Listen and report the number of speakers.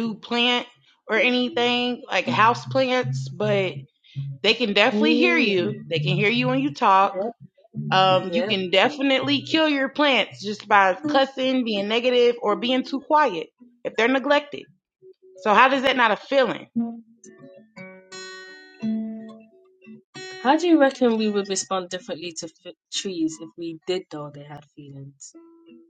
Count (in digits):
2